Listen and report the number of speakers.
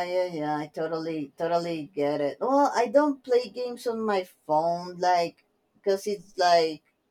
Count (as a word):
one